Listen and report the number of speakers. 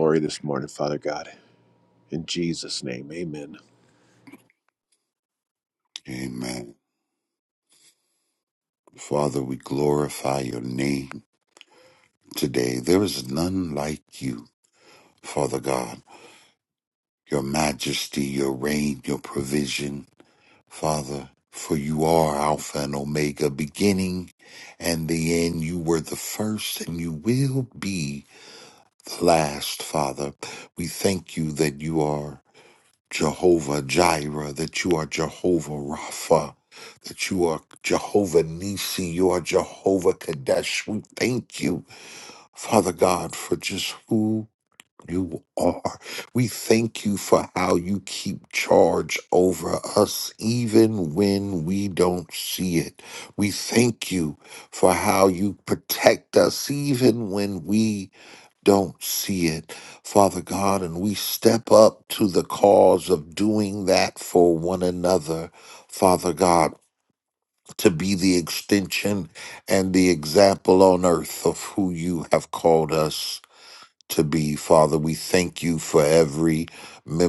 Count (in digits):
2